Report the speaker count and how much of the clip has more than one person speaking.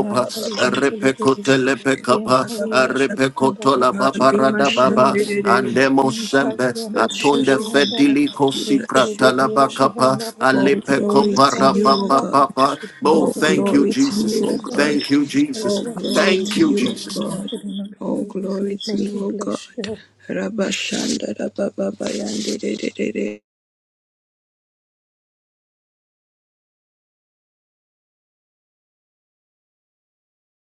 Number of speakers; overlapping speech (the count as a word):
three, about 55%